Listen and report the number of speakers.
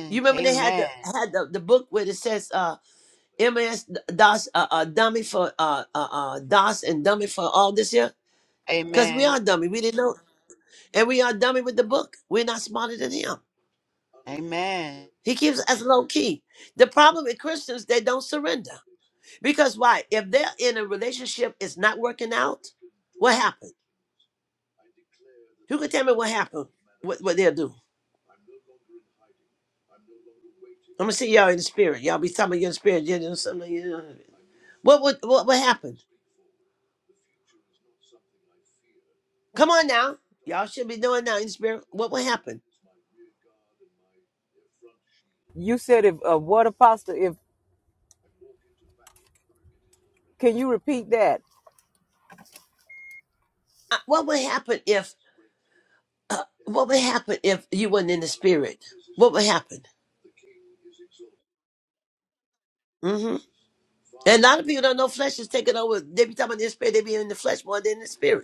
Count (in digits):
3